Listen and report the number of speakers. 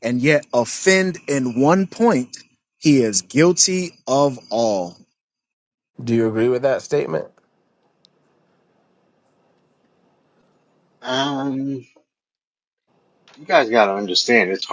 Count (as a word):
three